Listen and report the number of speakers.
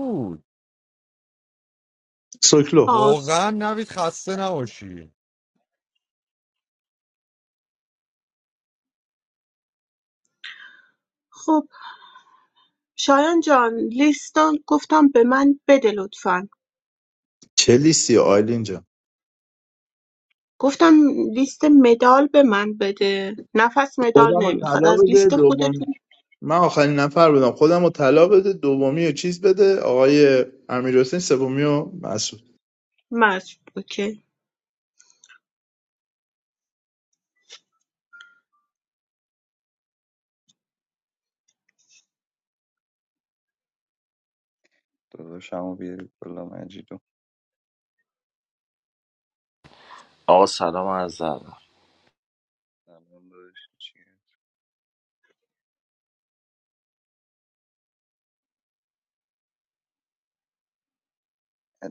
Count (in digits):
5